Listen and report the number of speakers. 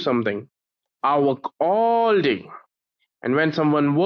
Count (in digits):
1